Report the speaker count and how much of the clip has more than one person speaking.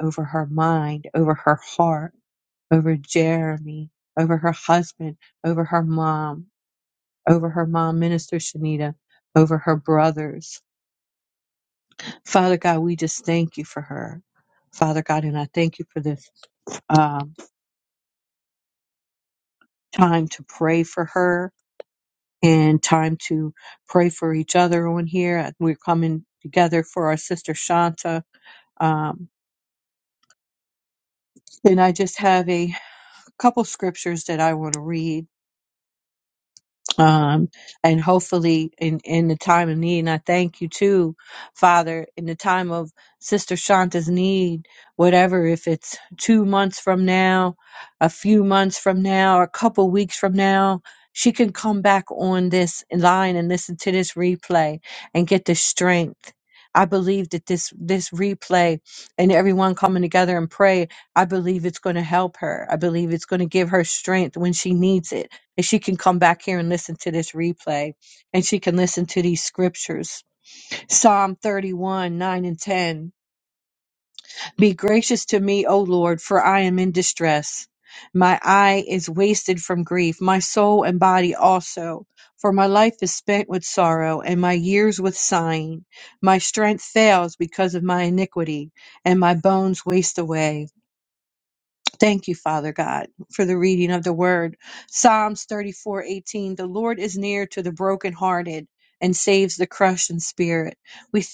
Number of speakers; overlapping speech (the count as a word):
one, no overlap